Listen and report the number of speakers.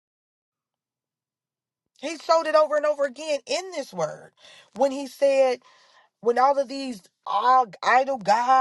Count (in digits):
1